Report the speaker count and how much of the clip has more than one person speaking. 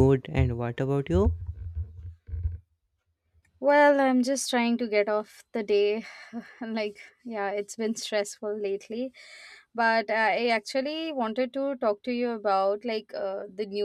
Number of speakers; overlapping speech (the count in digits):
2, no overlap